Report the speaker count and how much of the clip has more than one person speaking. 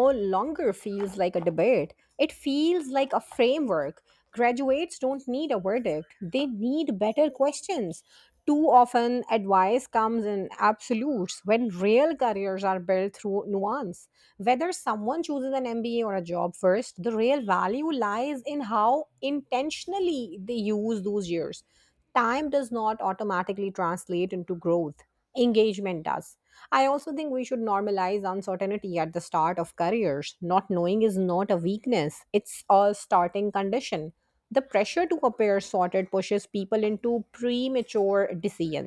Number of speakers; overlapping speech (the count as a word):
one, no overlap